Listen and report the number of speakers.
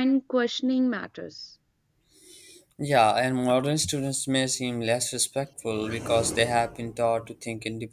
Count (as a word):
two